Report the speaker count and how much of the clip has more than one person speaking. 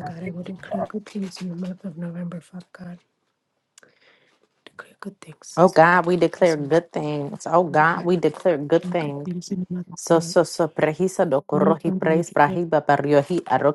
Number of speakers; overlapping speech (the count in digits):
2, about 27%